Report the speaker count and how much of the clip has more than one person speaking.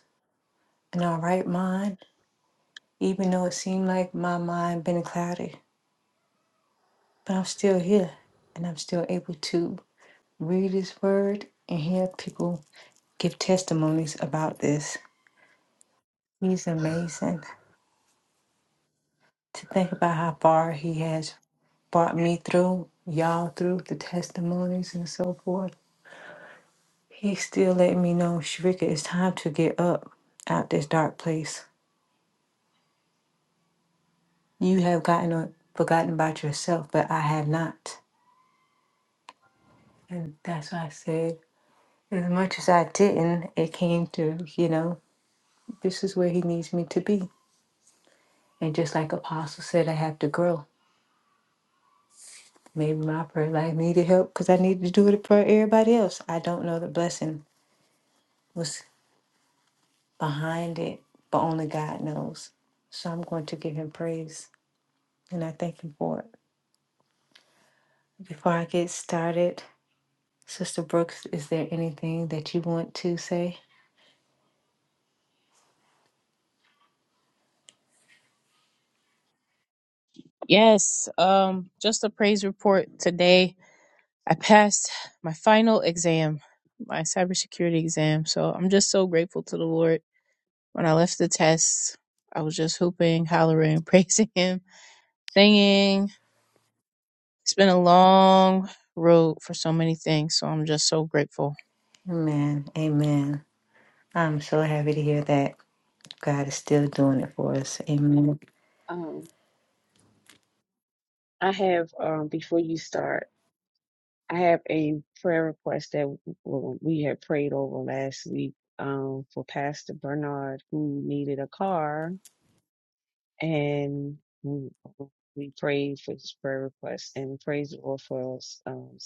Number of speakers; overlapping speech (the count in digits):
3, no overlap